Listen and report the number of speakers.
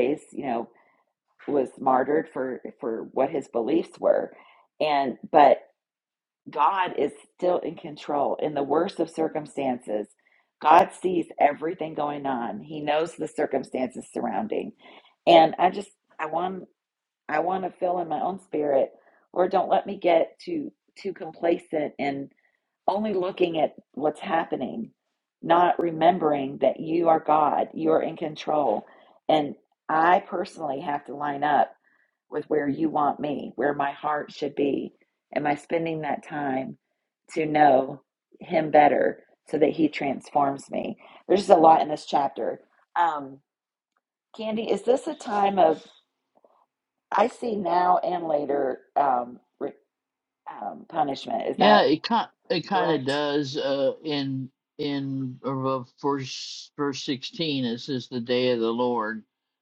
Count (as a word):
two